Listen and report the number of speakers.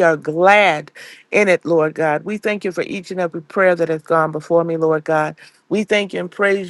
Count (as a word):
one